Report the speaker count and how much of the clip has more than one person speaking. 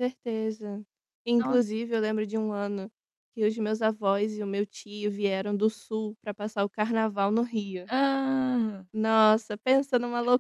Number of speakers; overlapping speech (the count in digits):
2, about 2%